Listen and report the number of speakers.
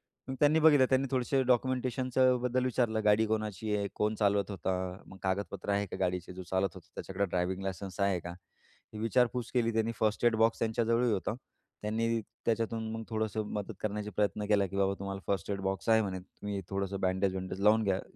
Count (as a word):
one